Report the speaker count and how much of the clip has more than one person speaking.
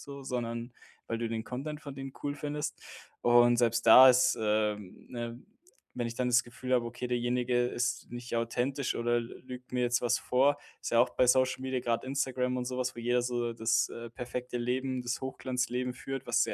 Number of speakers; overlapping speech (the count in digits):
1, no overlap